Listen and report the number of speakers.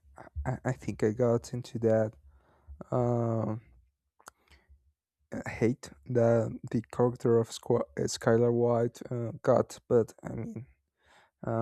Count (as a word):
one